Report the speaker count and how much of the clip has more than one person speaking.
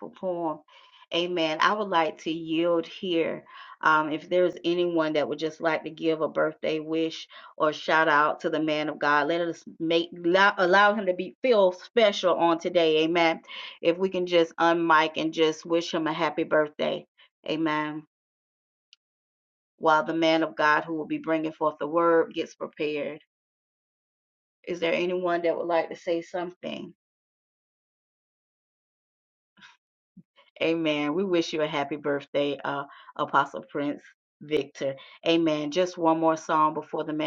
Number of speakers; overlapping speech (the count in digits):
1, no overlap